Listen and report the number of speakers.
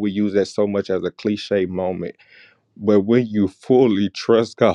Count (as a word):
one